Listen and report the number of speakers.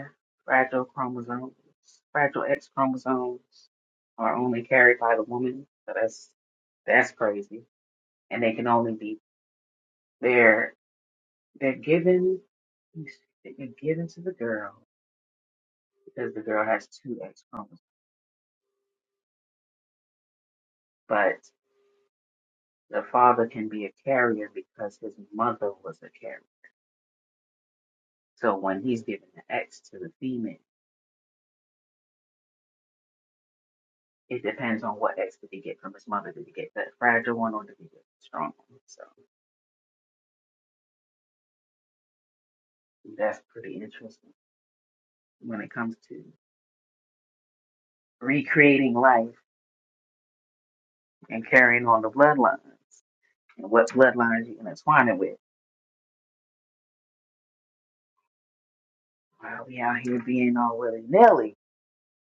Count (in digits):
1